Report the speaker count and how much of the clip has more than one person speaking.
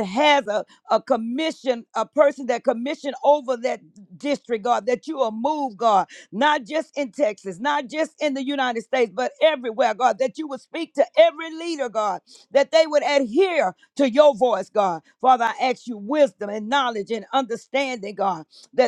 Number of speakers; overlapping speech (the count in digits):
1, no overlap